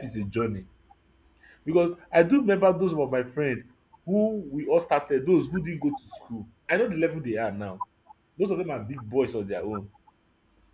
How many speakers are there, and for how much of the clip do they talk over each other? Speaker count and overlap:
1, no overlap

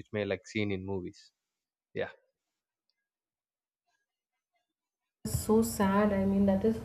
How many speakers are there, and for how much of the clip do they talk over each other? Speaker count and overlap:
2, no overlap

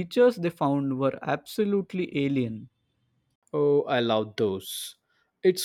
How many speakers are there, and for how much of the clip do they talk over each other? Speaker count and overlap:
2, no overlap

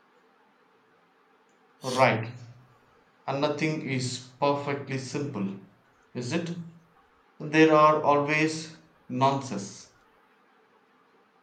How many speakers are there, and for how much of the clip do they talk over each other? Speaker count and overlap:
1, no overlap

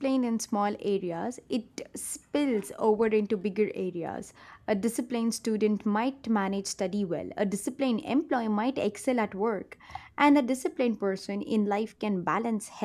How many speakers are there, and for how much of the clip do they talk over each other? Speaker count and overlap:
1, no overlap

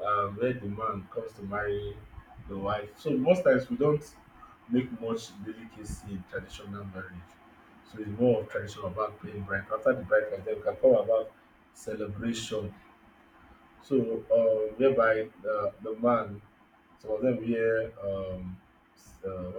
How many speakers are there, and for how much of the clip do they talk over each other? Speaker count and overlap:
1, no overlap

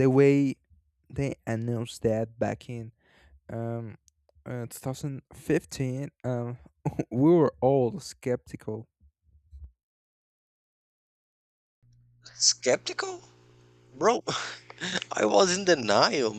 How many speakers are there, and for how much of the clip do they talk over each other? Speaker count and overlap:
2, no overlap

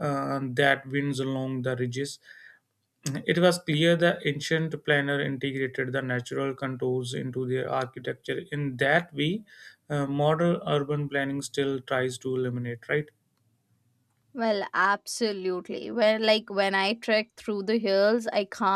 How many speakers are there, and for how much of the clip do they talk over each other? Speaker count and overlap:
2, no overlap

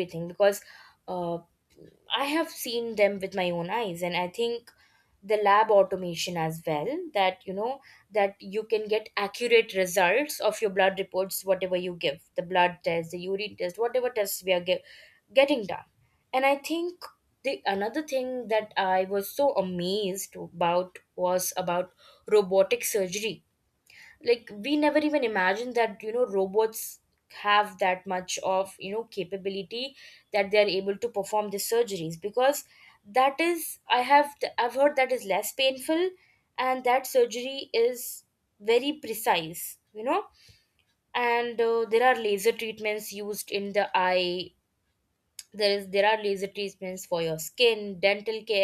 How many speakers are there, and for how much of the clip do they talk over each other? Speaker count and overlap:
1, no overlap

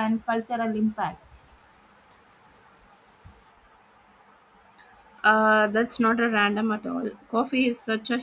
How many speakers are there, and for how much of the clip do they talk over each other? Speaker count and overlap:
2, no overlap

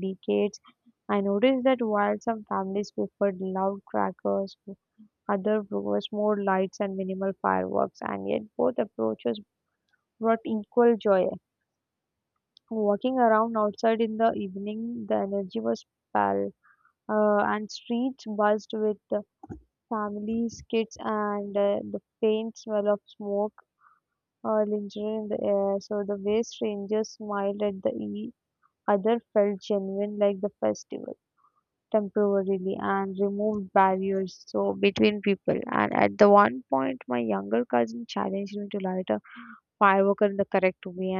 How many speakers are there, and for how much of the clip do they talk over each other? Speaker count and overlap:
1, no overlap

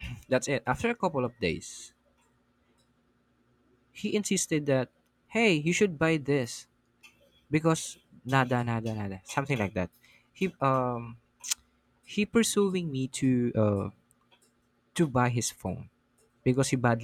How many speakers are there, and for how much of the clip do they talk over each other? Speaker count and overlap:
1, no overlap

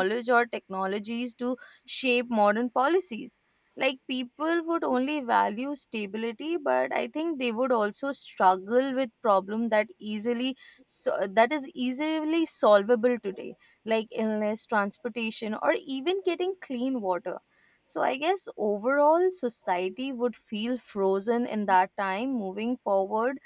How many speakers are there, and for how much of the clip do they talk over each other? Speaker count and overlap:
1, no overlap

